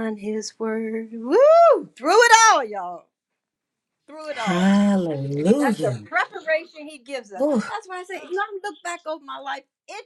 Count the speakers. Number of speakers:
2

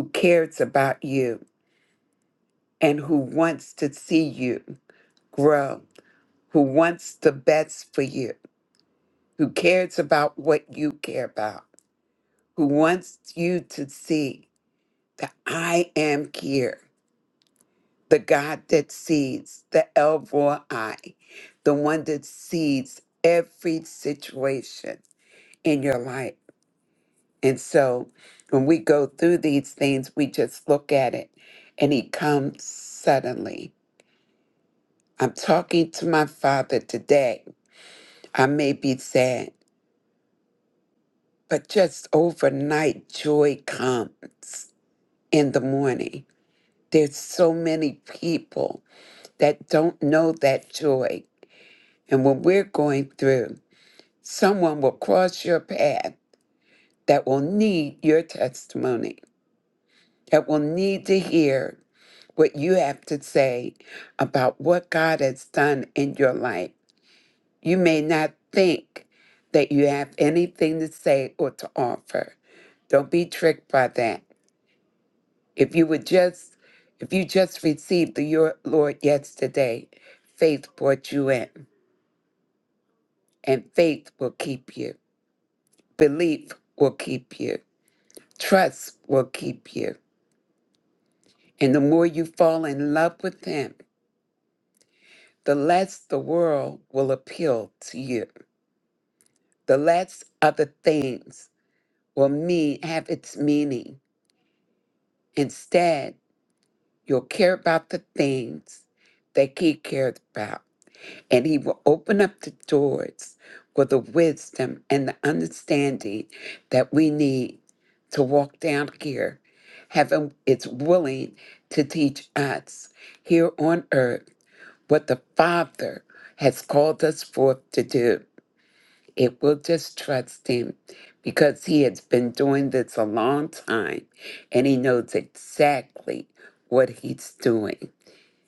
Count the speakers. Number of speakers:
1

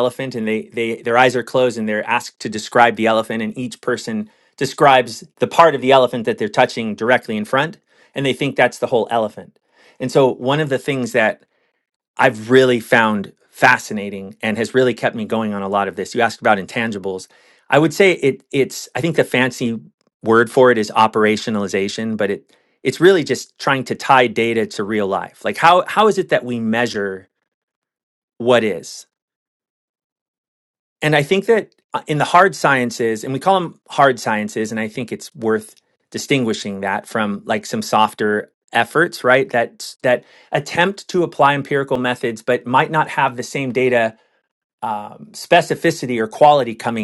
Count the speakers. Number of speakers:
1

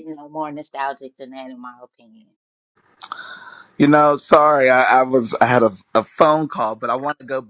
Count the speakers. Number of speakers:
2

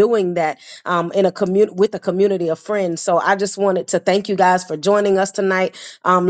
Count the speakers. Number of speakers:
1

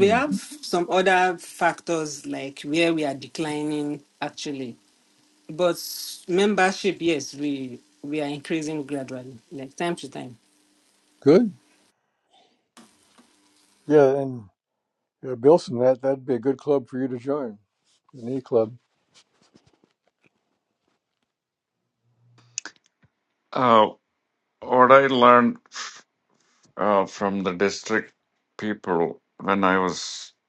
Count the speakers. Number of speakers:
3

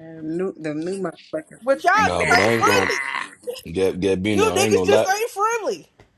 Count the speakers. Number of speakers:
3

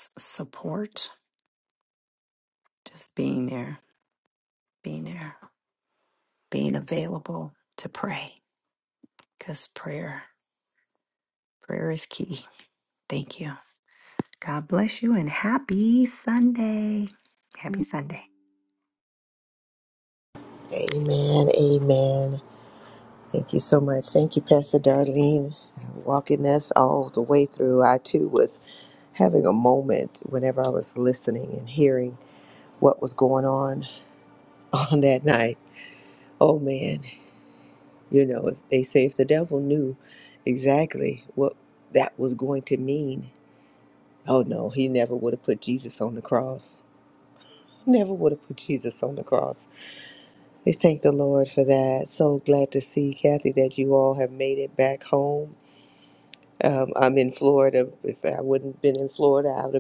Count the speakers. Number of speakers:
2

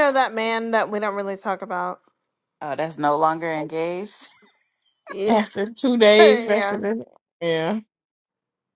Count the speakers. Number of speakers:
3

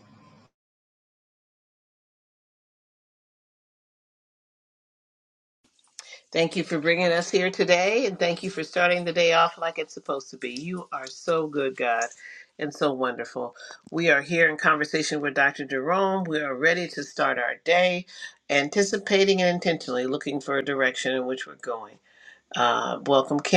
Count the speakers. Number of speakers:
1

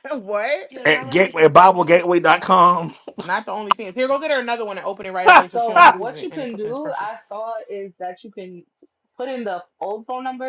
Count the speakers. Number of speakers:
3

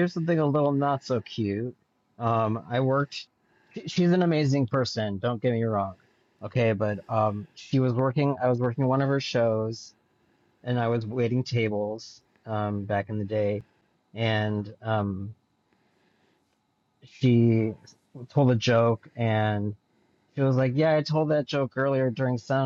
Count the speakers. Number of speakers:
1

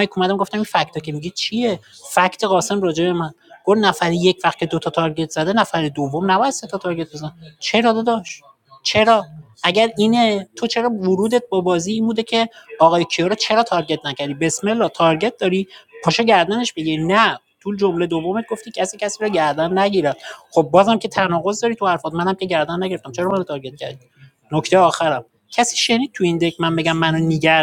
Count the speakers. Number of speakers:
1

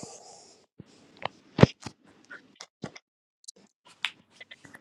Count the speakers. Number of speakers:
0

